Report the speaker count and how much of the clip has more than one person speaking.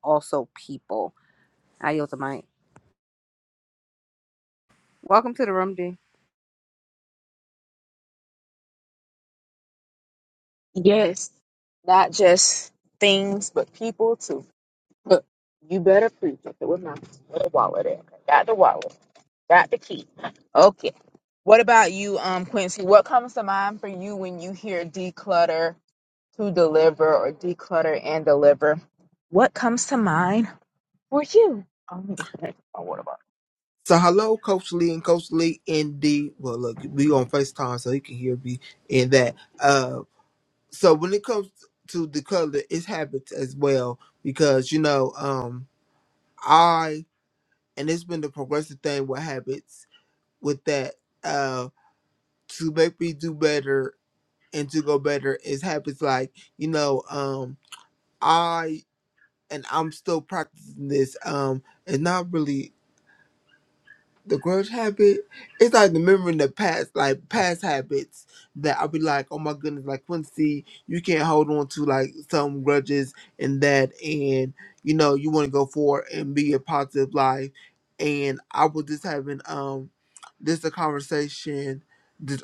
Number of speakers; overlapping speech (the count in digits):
3, no overlap